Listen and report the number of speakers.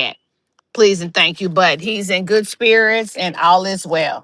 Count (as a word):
one